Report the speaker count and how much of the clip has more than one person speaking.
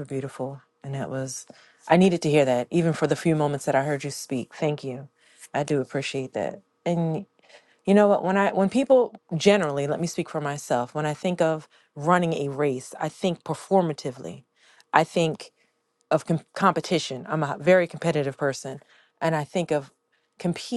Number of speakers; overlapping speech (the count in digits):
1, no overlap